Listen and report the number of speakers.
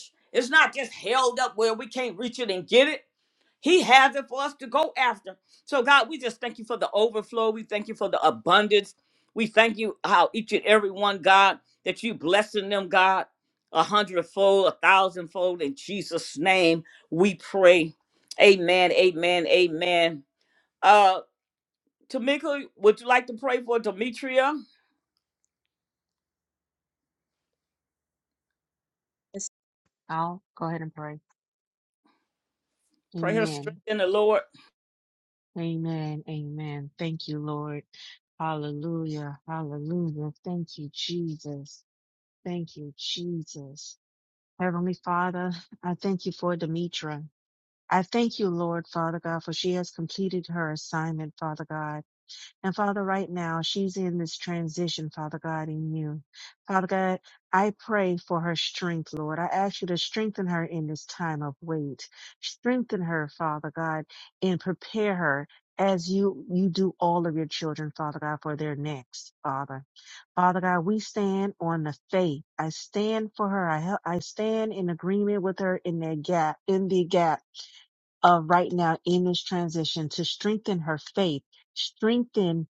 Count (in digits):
2